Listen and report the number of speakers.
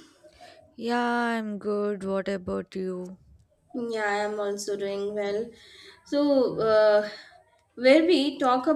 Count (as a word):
two